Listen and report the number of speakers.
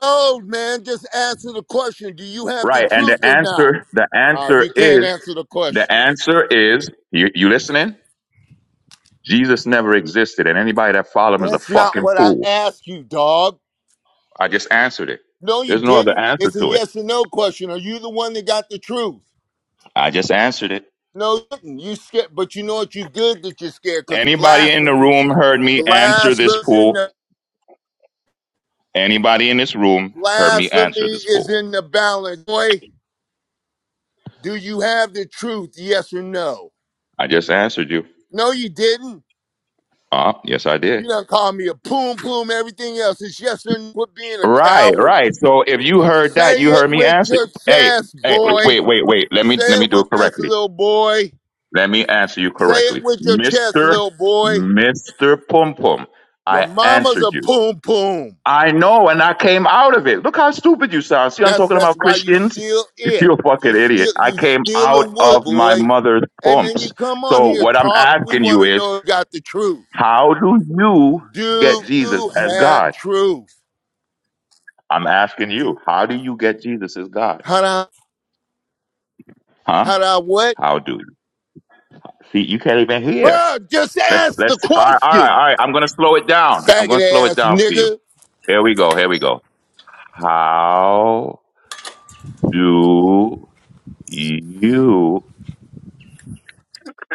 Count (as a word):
two